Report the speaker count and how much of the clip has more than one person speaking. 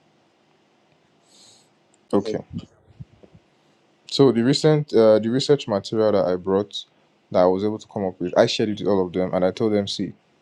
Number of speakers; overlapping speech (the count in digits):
1, no overlap